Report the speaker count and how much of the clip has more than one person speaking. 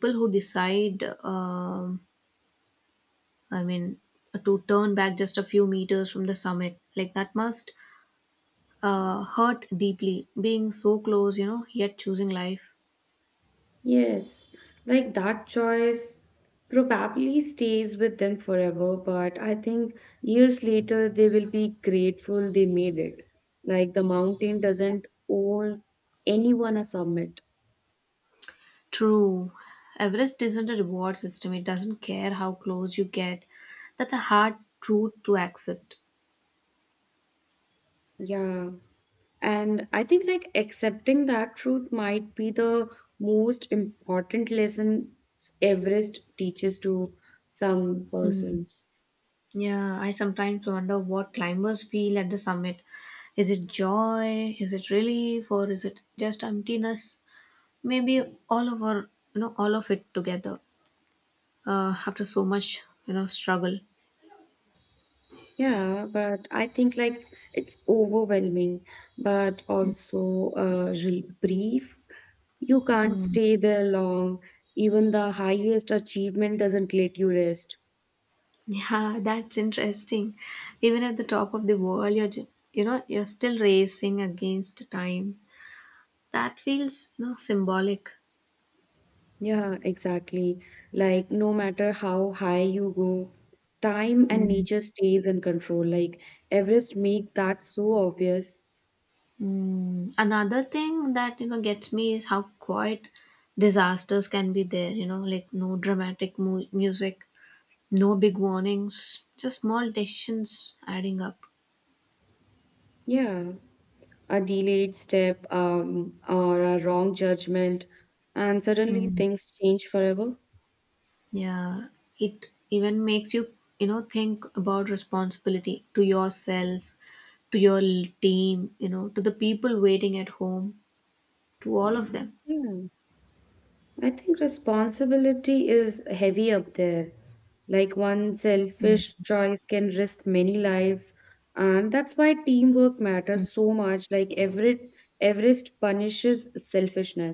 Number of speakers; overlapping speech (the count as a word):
two, about 1%